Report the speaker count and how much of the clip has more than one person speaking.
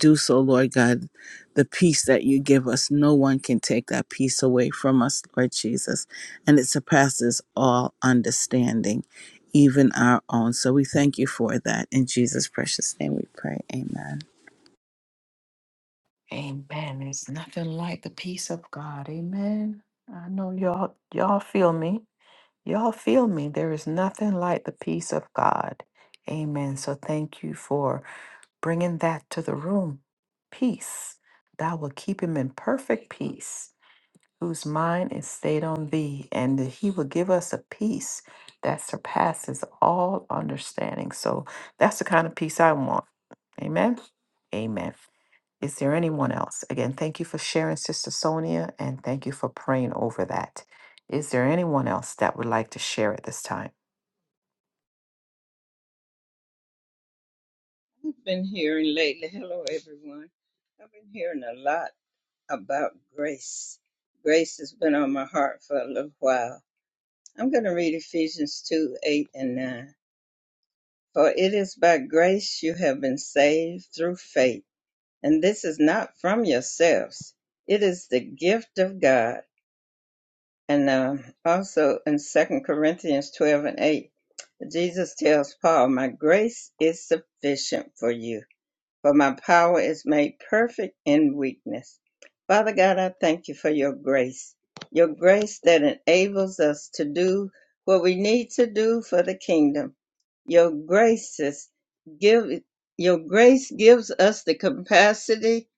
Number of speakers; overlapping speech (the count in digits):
3, no overlap